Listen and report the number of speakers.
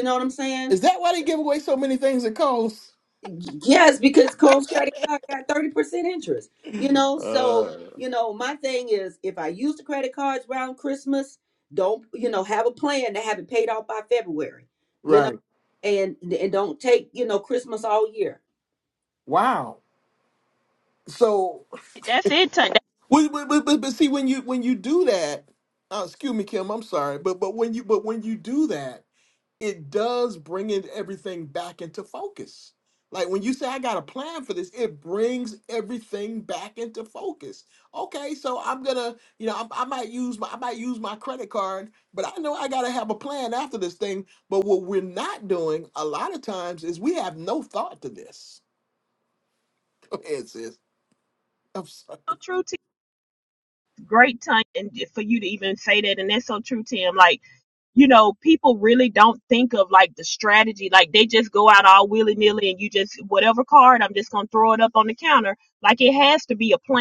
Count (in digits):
3